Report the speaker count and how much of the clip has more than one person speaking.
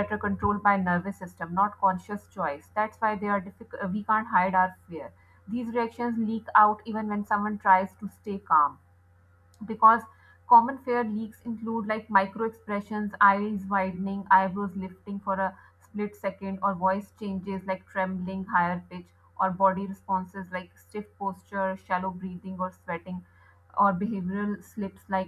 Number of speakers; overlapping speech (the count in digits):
1, no overlap